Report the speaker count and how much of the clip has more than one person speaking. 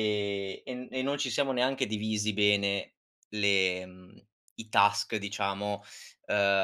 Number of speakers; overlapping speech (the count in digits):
1, no overlap